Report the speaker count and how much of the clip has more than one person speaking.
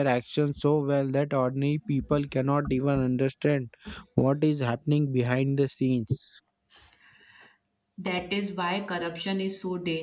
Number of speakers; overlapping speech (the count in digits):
2, no overlap